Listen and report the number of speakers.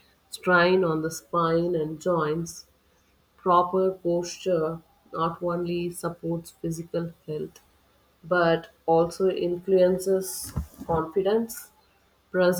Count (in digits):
1